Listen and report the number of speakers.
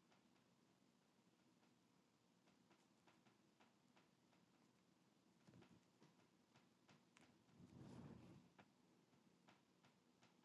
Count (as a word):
zero